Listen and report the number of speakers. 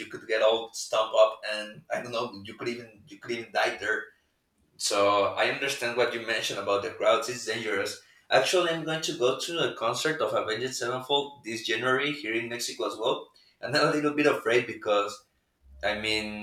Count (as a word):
one